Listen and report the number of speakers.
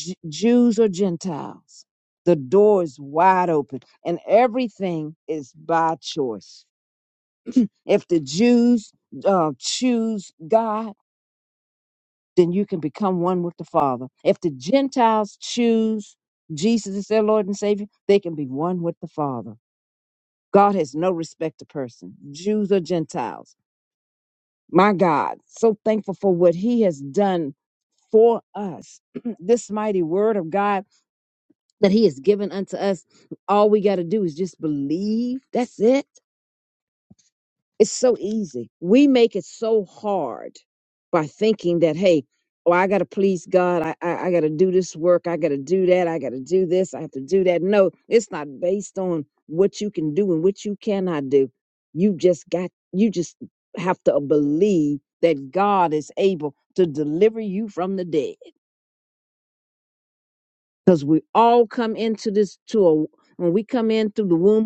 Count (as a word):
one